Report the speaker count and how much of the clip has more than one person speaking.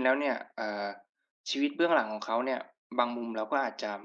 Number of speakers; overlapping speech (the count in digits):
1, no overlap